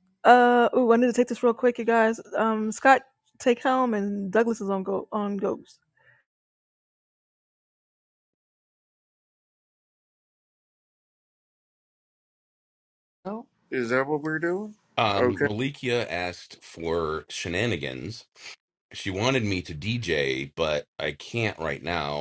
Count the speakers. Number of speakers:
3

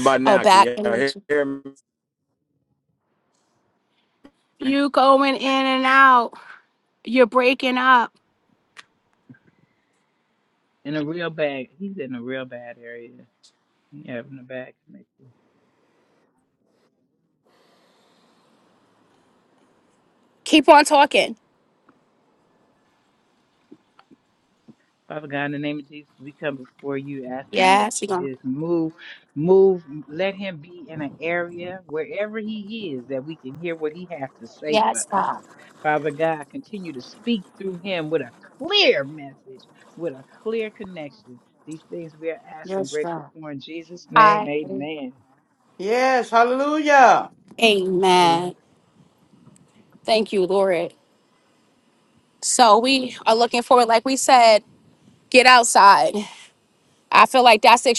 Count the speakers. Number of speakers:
4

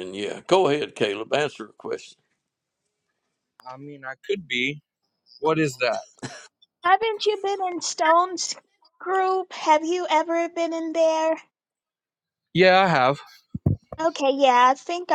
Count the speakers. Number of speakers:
3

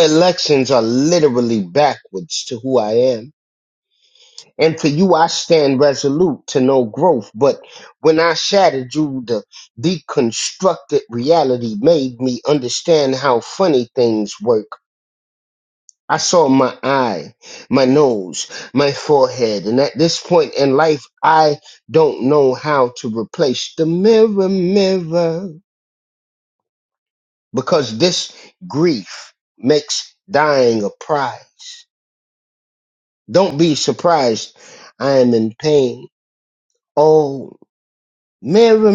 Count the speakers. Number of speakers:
1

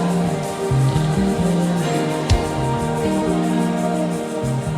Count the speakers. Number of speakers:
0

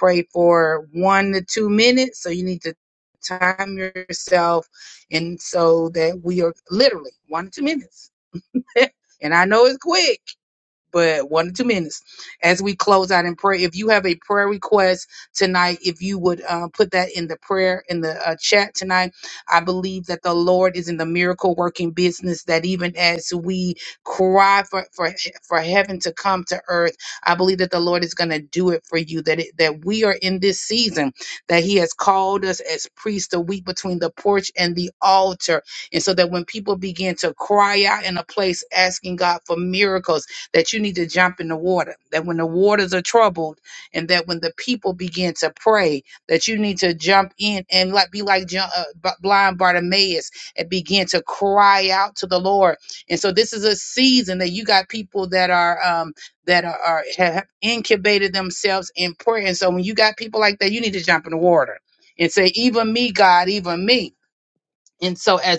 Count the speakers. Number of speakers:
1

